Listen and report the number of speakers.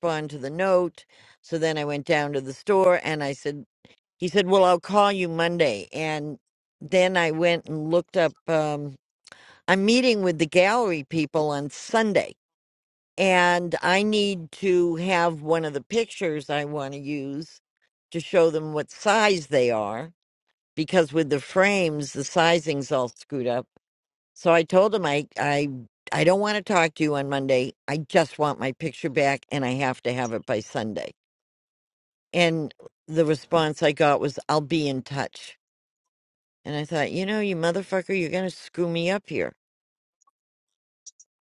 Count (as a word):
one